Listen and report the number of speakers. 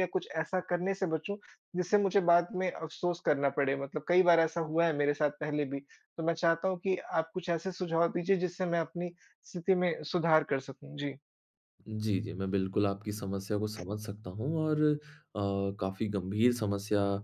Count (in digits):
2